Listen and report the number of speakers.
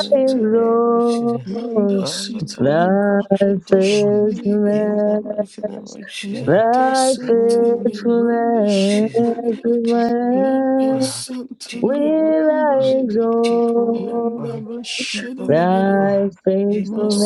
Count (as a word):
three